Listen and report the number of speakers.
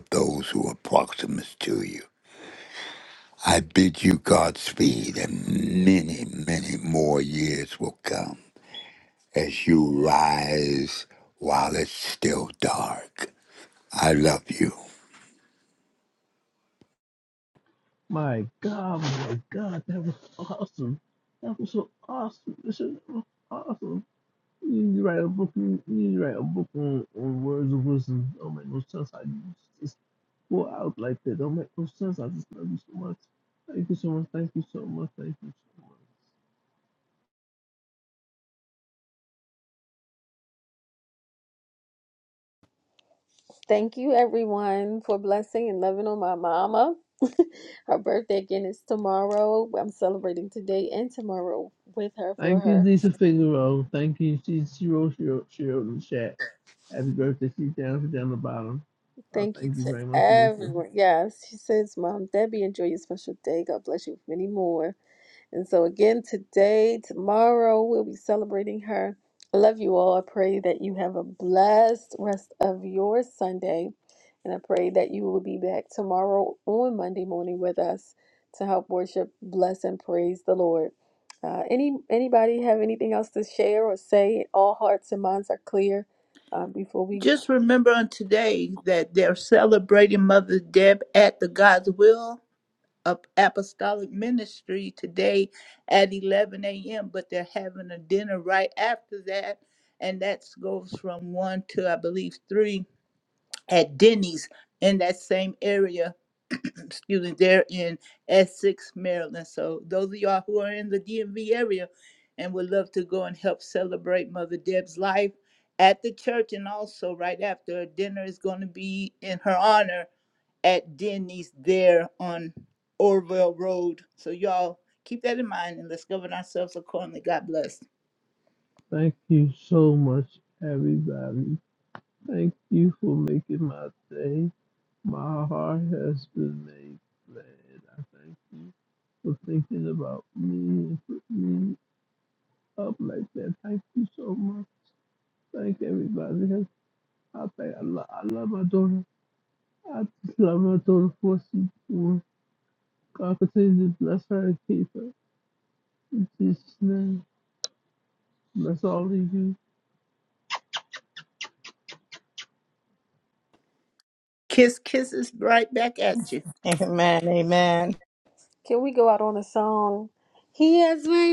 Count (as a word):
five